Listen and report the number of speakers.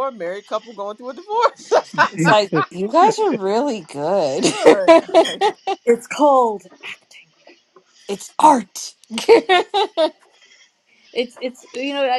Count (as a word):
three